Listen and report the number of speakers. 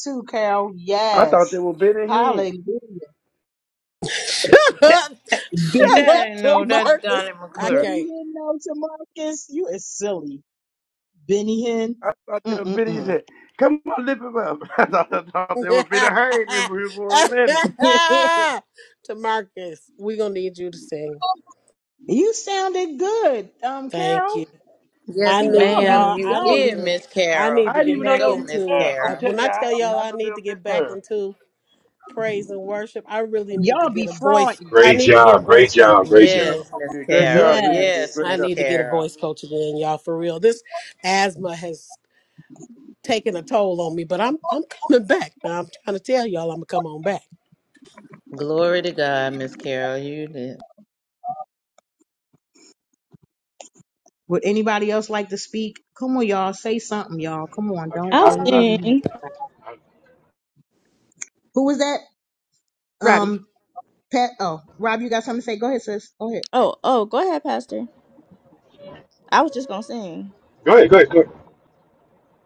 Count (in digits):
6